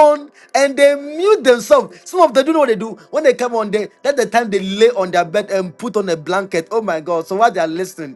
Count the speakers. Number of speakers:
one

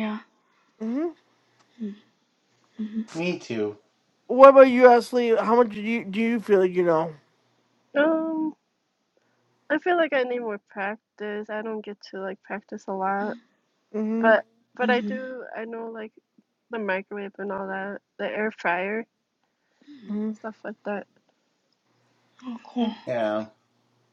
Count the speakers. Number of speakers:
four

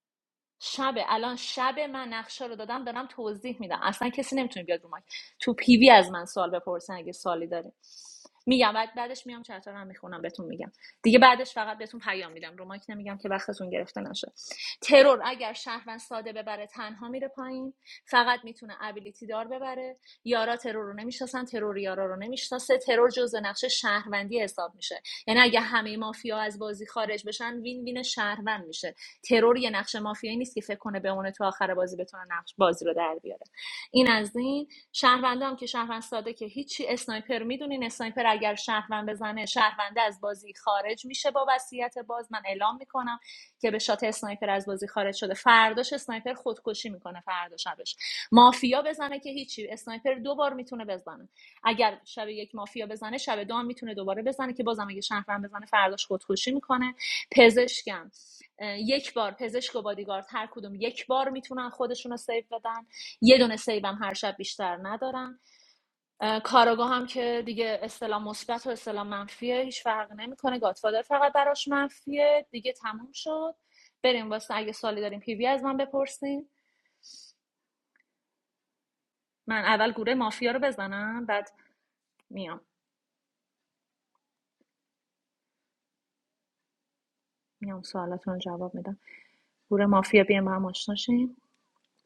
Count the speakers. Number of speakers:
one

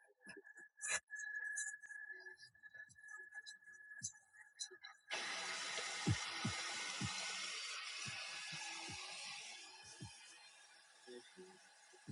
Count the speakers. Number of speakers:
zero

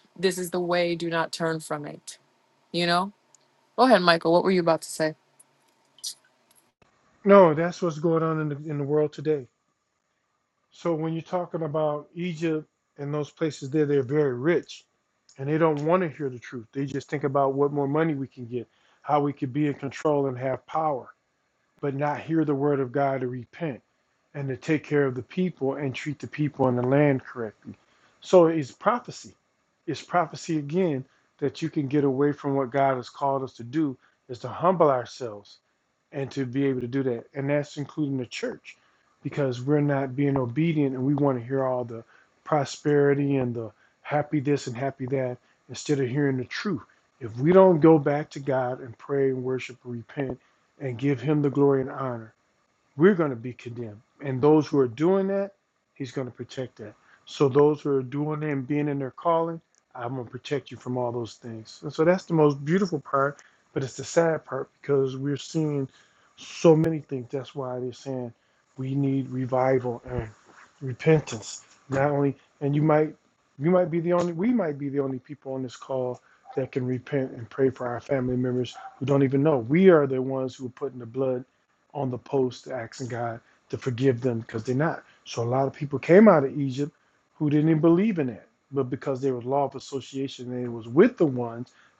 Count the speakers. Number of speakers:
two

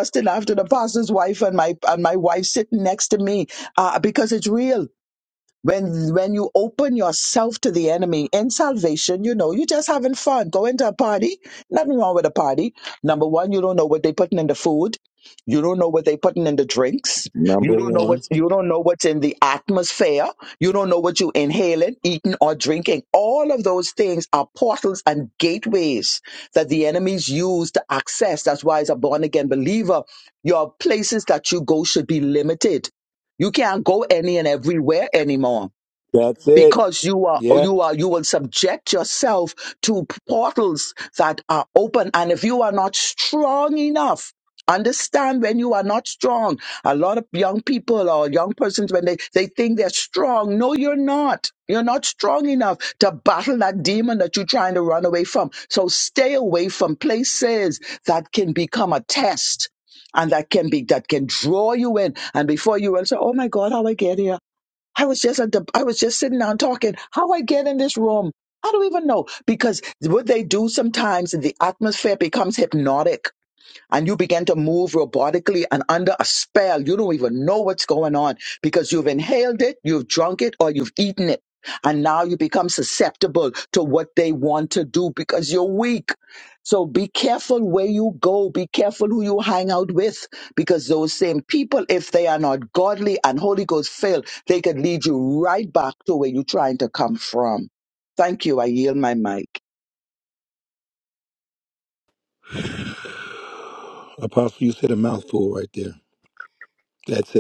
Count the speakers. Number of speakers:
two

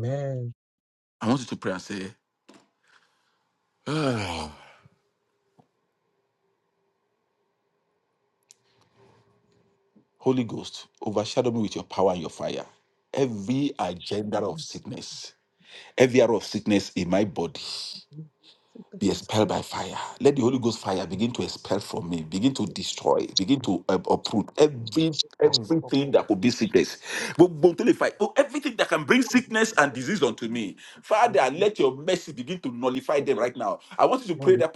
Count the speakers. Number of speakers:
two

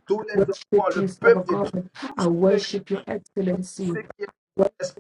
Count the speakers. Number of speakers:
two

